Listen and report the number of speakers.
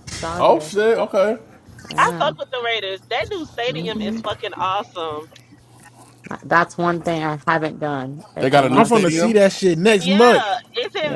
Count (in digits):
4